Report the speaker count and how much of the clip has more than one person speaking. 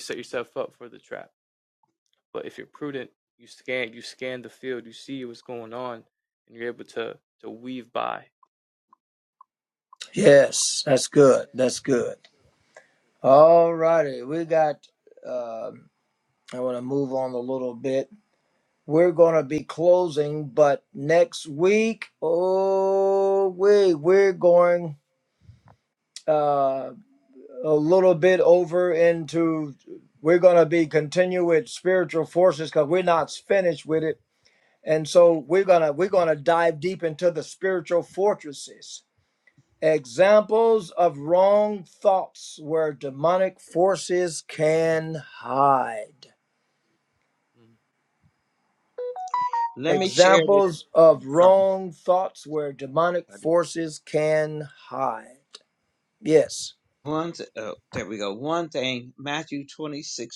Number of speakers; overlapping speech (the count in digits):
3, about 2%